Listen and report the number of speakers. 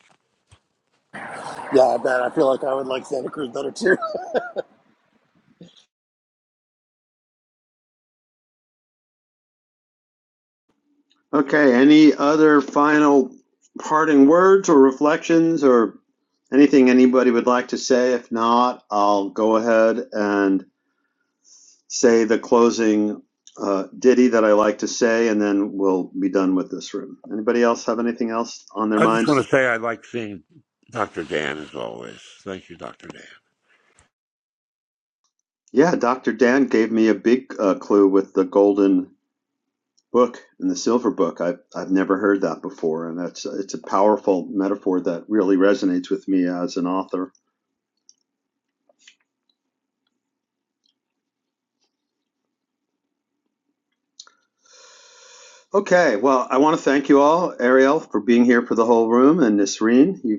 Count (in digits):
3